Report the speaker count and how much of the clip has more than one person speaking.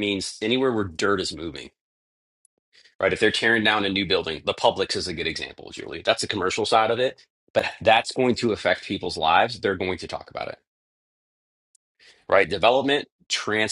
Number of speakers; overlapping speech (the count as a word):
one, no overlap